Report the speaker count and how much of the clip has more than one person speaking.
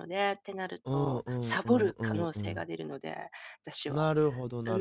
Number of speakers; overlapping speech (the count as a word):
two, about 40%